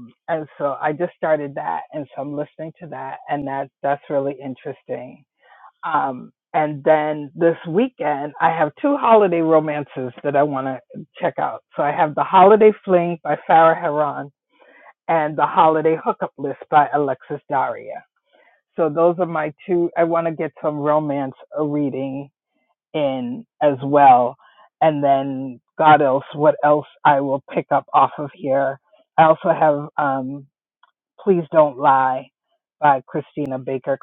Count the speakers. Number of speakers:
one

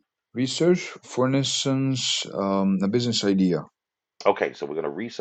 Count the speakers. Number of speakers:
two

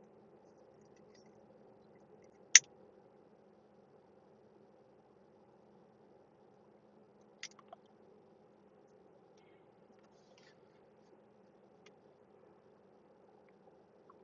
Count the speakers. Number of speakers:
zero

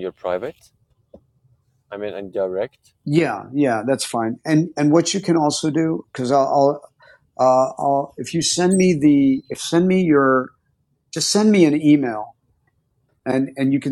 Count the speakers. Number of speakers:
two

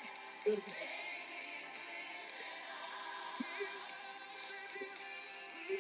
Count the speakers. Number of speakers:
zero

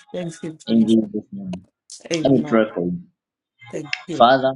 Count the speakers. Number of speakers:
two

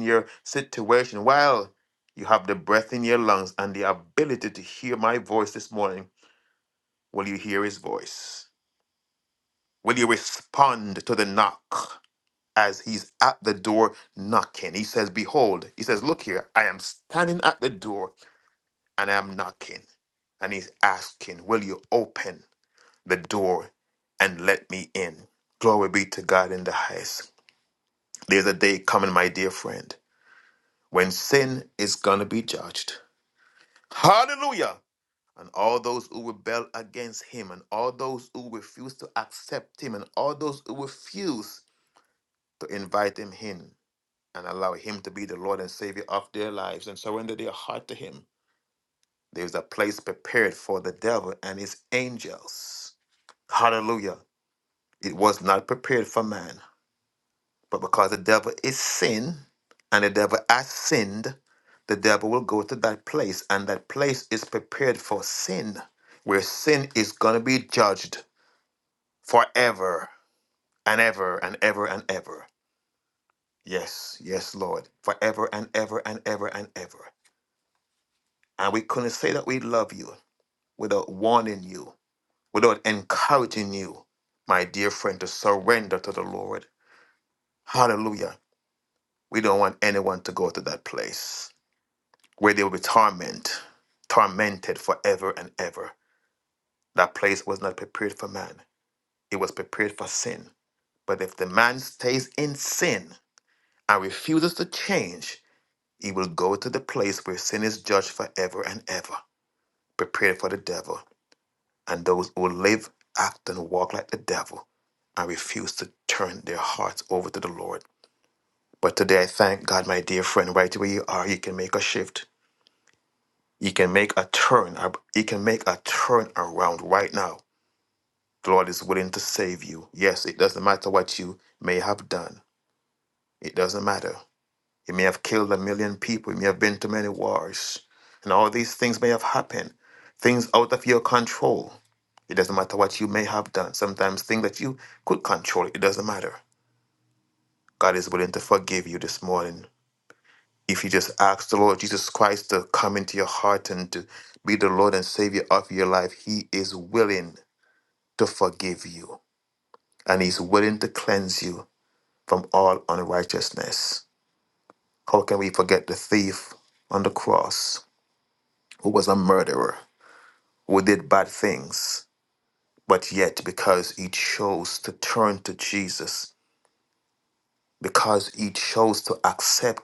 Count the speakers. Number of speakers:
one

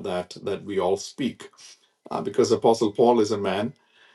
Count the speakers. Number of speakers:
one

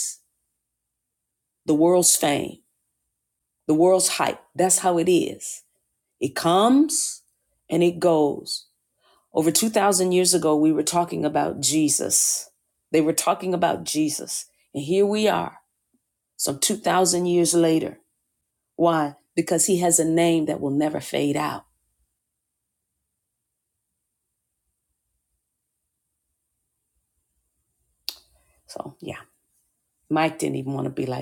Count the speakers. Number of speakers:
one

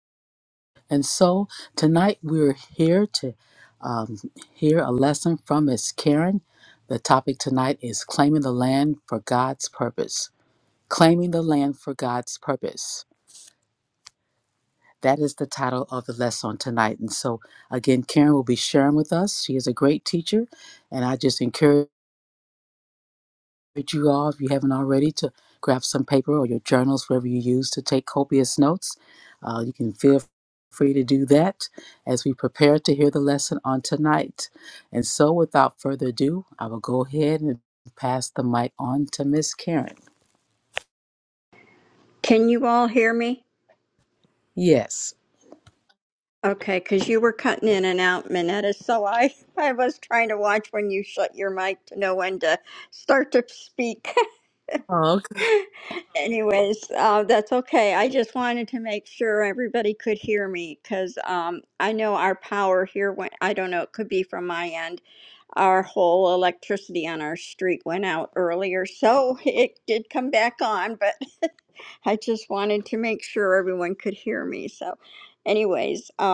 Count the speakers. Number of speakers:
two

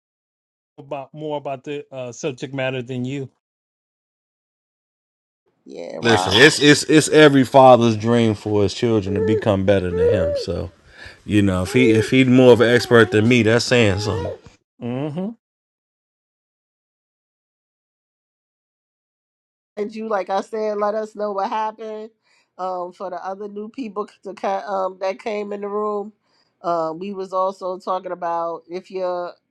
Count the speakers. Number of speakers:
three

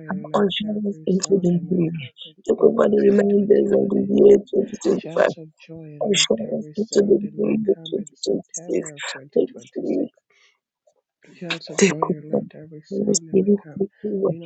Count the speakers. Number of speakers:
two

